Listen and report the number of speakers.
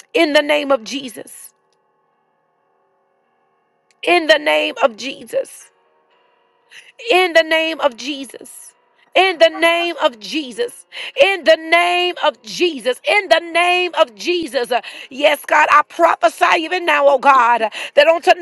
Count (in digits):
1